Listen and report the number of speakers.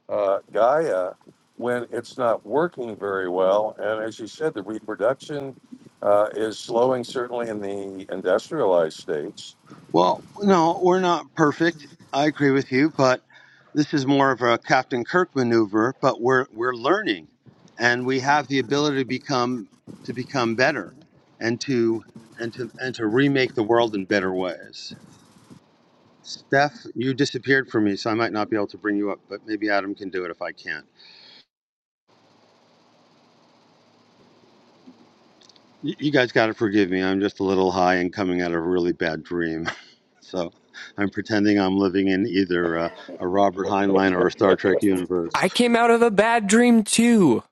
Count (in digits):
3